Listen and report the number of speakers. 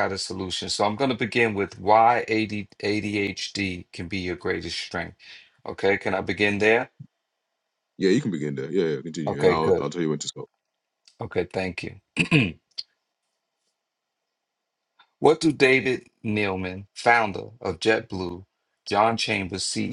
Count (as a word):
two